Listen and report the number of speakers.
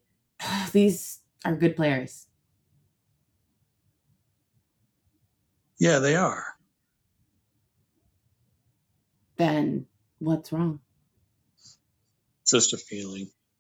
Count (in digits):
2